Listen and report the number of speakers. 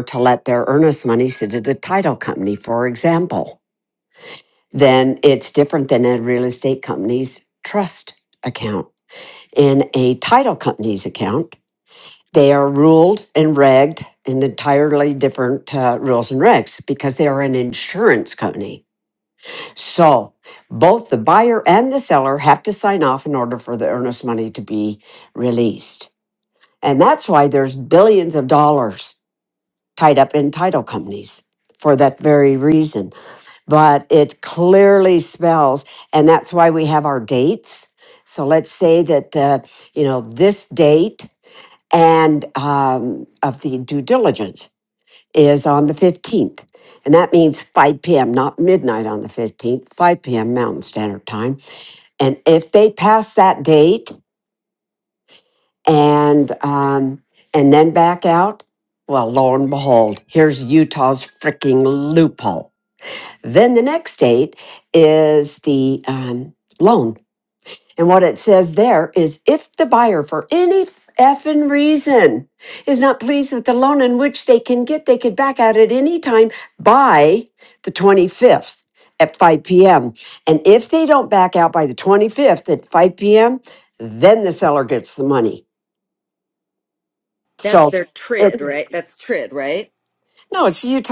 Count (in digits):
2